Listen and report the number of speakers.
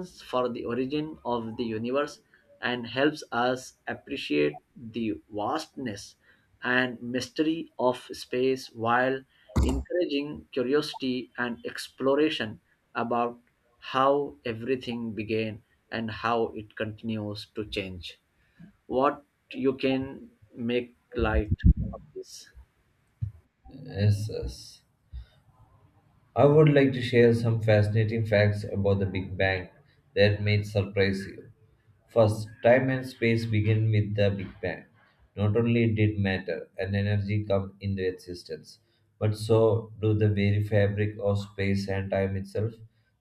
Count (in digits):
2